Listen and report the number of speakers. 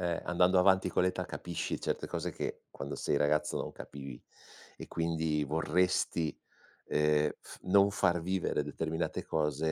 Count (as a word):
one